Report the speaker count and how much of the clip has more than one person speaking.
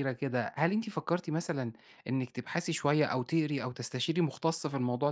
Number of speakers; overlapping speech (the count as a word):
one, no overlap